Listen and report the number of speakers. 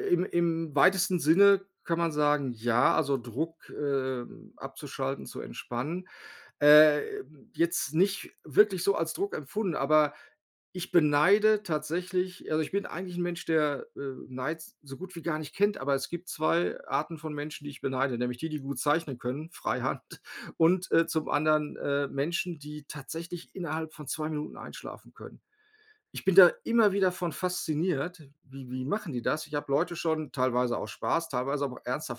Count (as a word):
one